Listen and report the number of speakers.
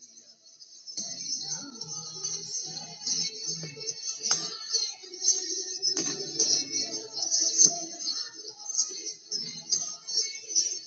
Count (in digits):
0